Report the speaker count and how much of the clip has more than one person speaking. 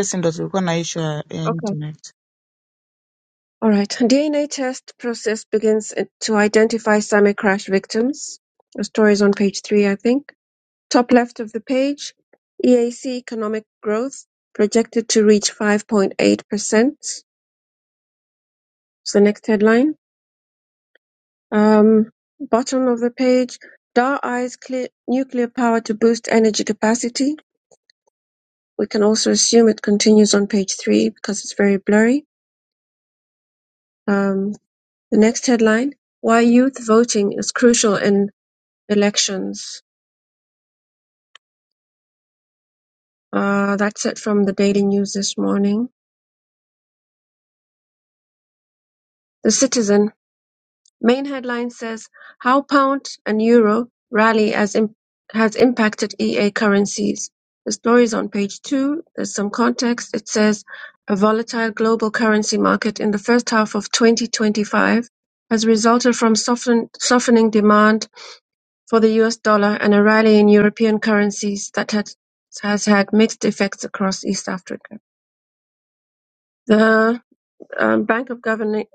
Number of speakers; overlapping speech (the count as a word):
two, under 1%